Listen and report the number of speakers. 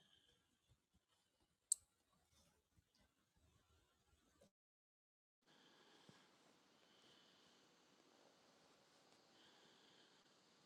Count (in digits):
0